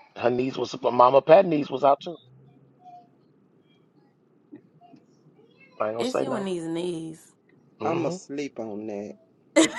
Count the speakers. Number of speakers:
three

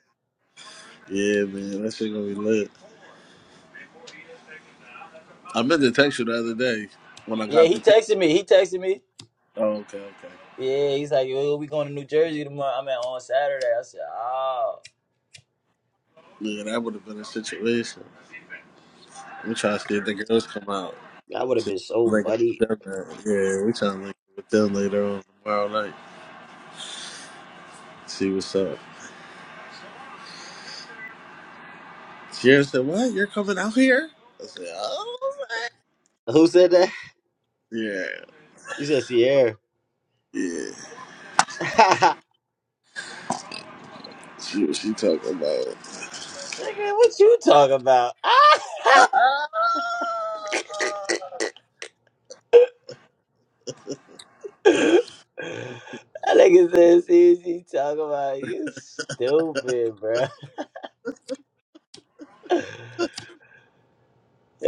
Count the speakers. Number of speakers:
two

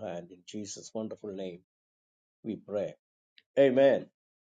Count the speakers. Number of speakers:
one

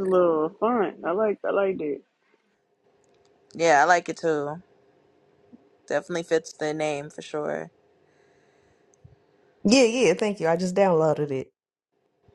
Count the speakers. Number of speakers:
three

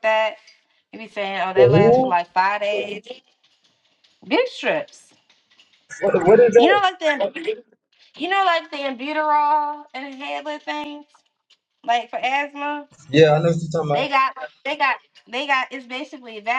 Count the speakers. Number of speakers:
two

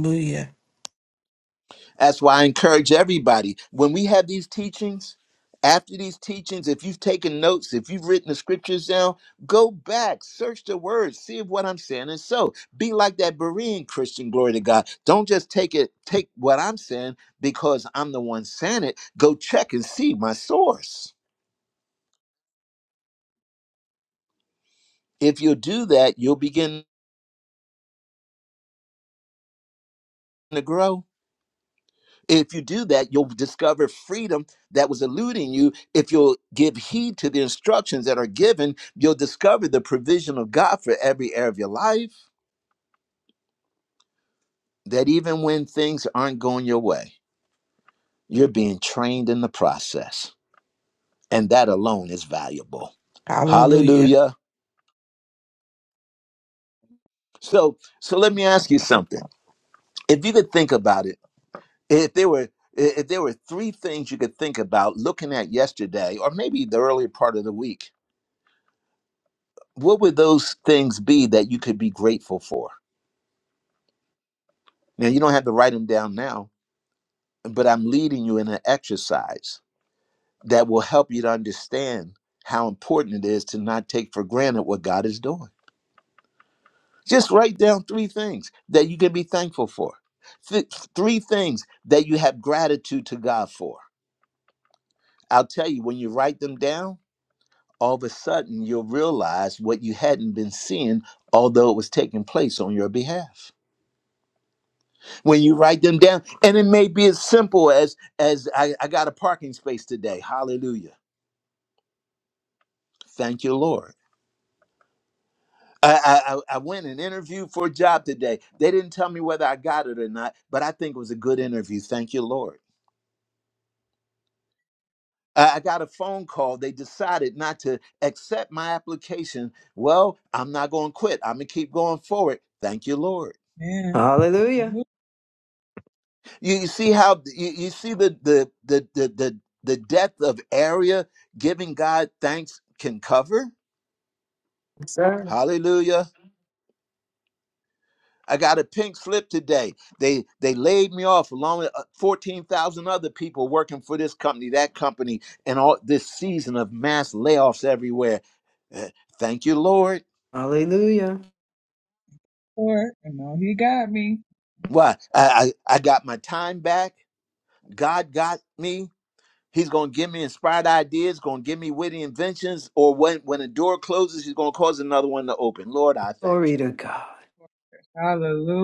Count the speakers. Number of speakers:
four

